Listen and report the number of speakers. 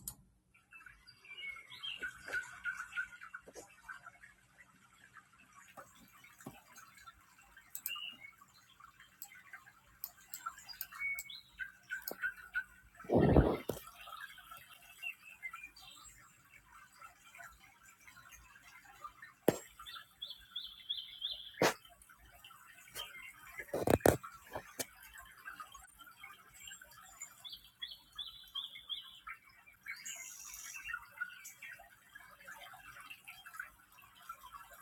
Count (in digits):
0